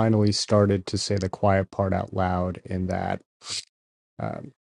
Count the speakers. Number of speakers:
1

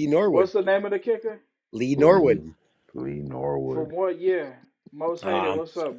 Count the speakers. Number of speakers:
3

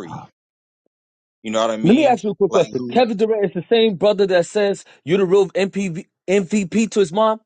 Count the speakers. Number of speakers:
2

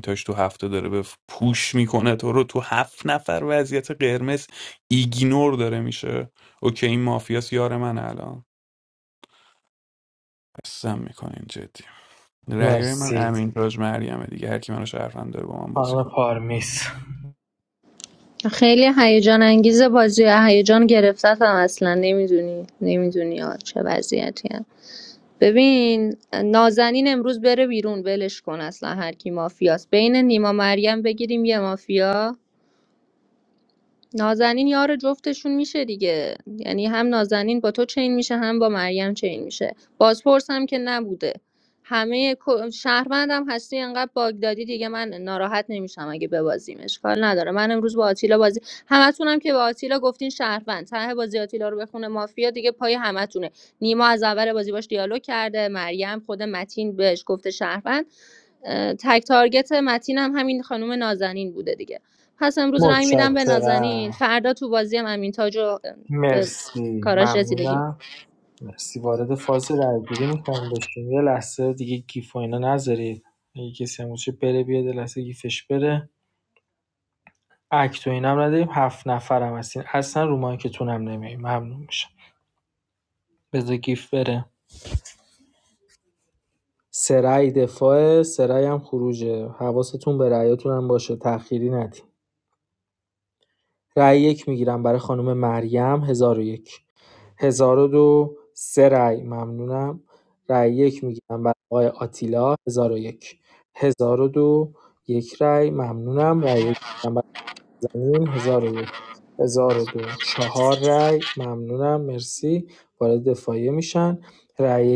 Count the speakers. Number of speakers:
3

